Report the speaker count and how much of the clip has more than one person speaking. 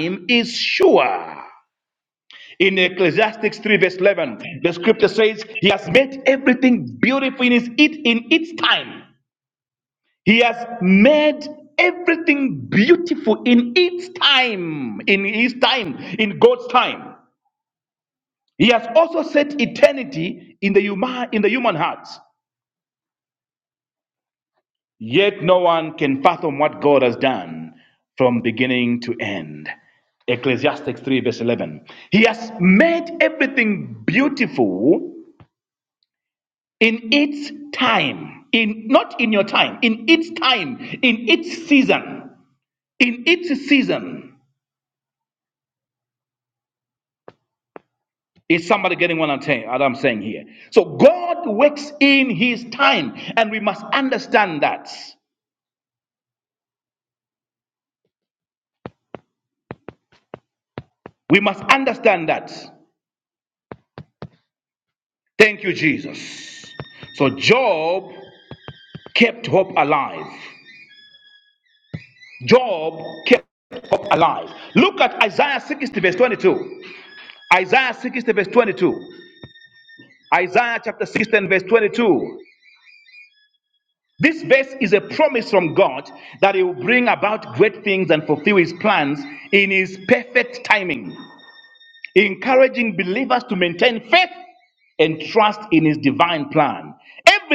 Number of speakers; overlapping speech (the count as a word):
one, no overlap